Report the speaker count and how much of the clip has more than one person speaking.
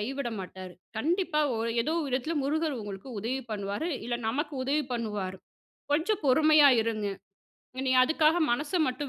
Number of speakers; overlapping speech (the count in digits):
1, no overlap